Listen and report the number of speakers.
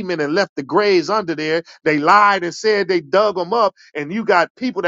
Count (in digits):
1